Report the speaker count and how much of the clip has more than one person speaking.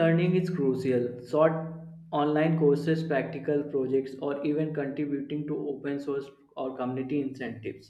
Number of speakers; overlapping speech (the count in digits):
1, no overlap